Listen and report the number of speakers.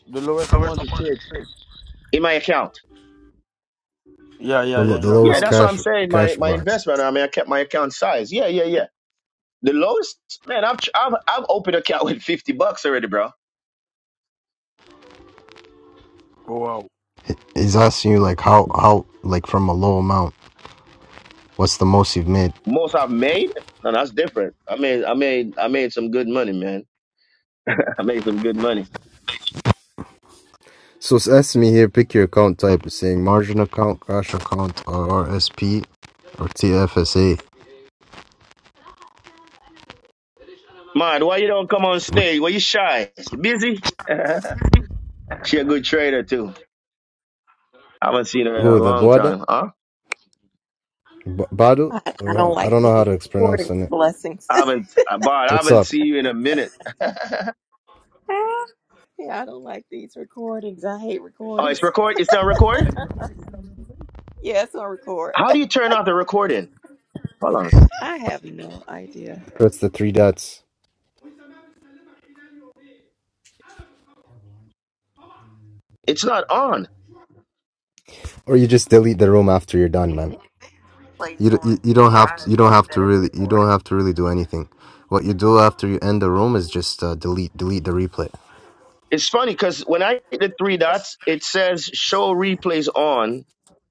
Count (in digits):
4